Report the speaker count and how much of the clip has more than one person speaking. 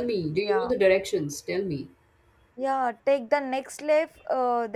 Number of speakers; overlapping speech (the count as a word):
two, about 8%